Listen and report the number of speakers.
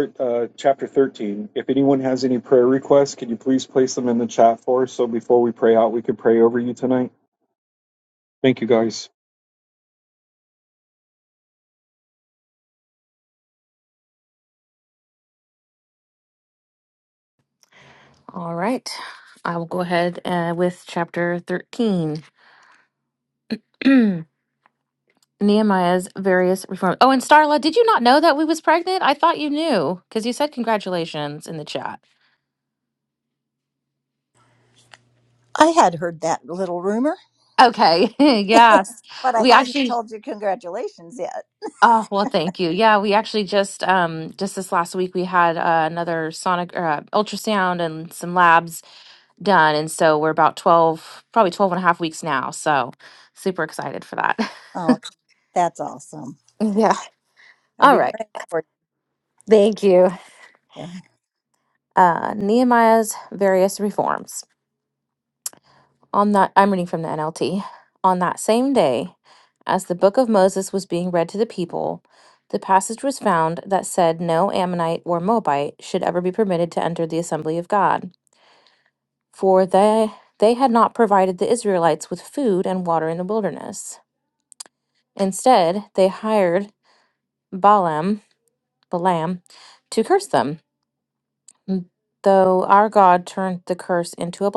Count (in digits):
3